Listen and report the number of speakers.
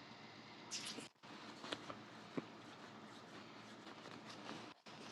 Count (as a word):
zero